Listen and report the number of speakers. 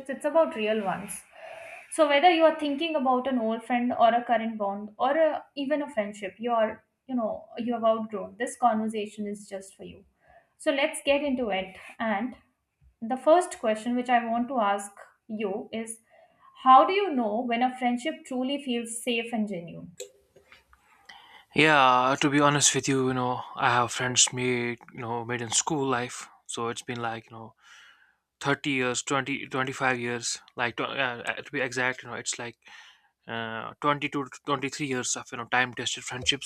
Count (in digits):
2